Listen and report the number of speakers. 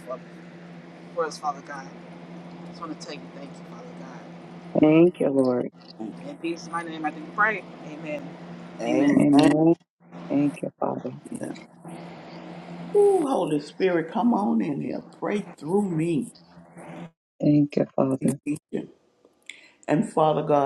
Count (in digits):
3